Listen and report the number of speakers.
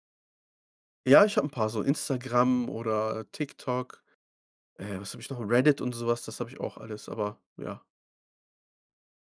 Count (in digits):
1